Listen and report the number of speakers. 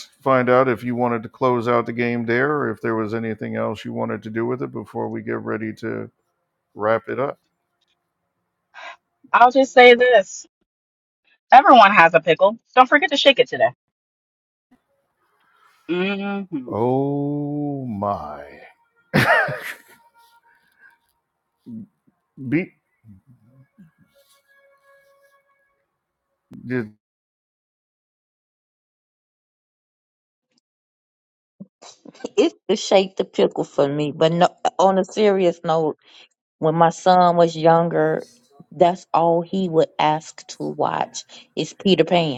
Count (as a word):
three